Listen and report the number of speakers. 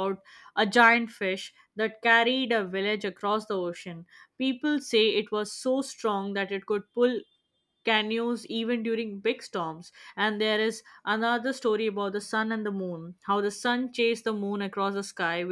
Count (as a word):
one